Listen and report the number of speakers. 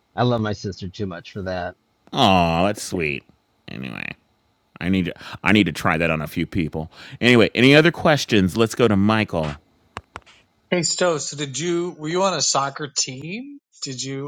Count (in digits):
3